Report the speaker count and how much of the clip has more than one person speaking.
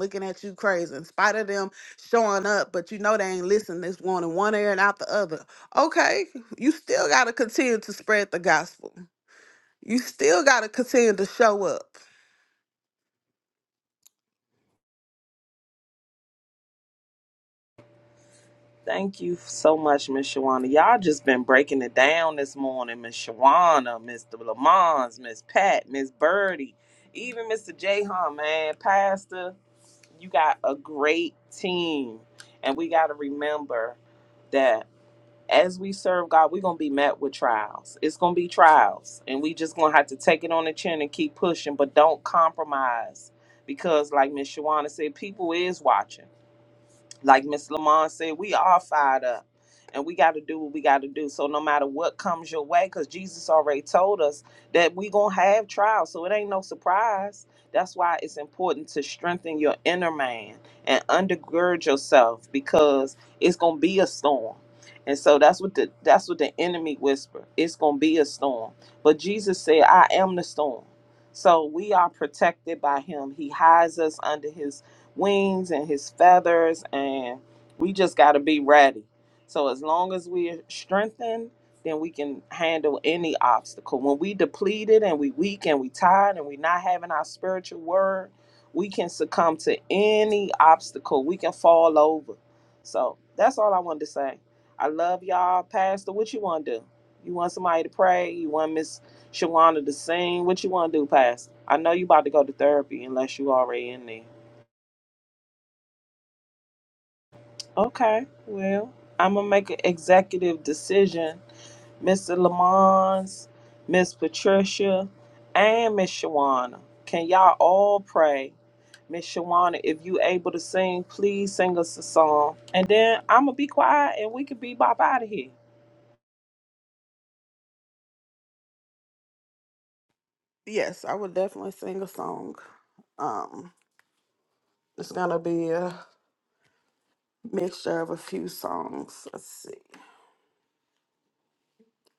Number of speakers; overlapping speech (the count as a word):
two, no overlap